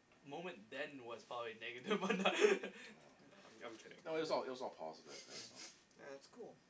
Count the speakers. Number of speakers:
three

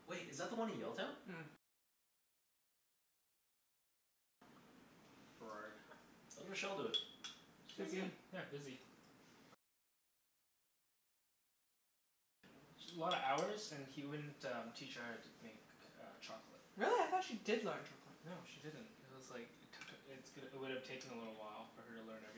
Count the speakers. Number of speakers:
three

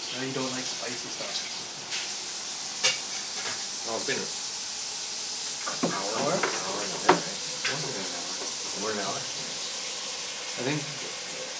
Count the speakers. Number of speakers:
three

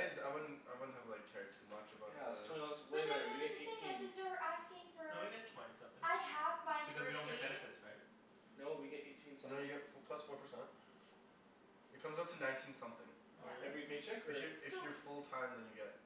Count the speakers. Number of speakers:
four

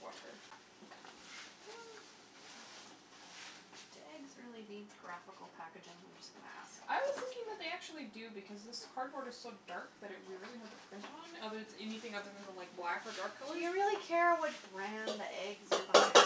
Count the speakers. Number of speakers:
two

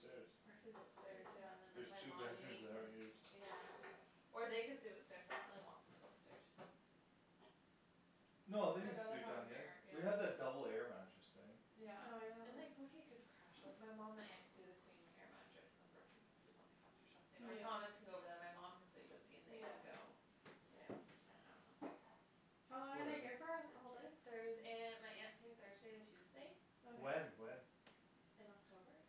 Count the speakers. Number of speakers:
three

